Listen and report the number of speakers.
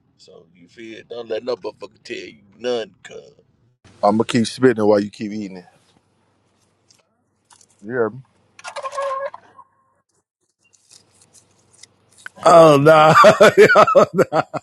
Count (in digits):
3